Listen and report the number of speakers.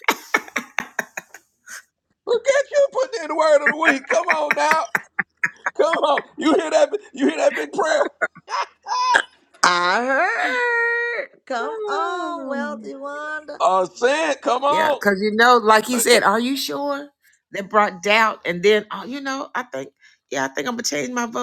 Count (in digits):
3